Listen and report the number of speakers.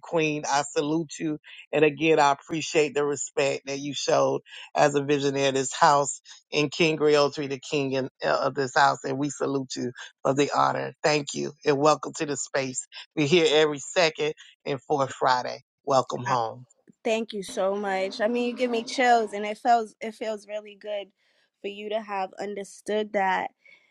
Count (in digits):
2